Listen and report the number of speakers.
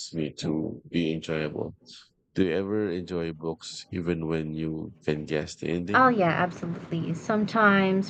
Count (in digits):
2